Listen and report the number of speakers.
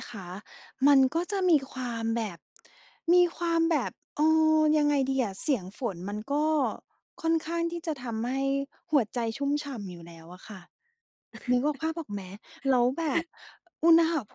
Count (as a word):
one